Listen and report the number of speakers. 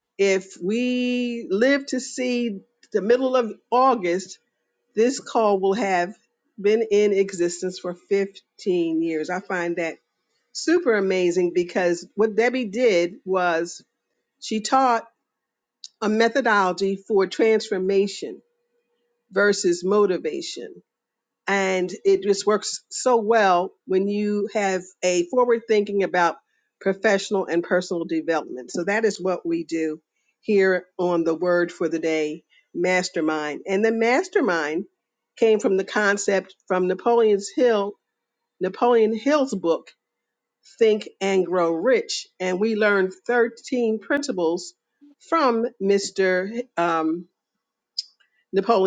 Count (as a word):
one